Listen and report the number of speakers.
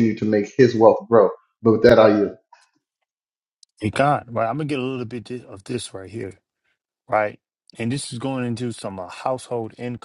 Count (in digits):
2